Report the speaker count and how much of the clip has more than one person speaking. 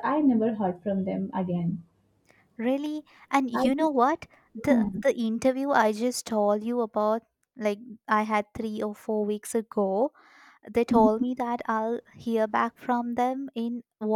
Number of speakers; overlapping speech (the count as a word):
two, about 7%